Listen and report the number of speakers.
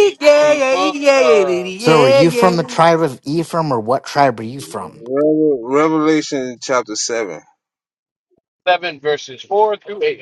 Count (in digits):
4